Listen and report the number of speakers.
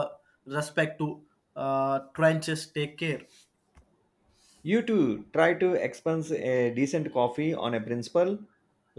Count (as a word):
two